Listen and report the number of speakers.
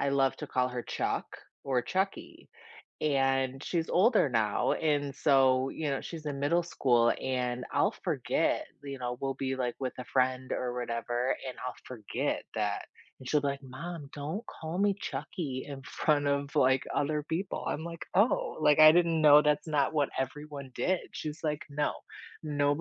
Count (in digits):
1